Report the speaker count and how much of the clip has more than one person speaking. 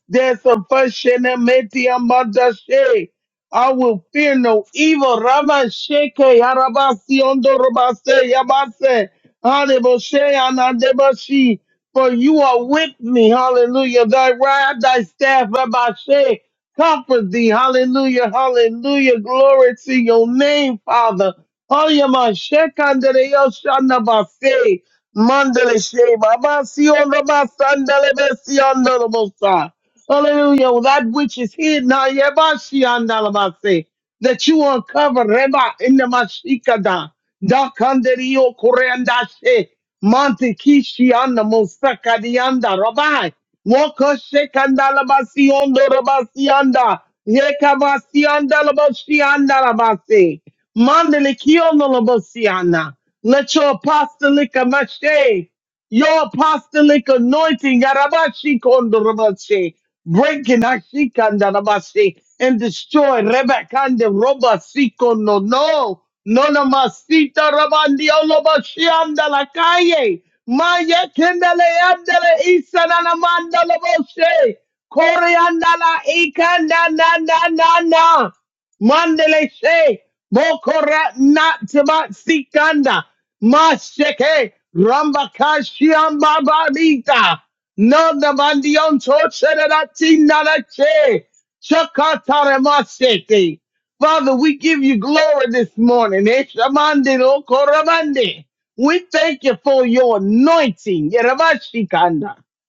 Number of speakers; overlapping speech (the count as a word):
one, no overlap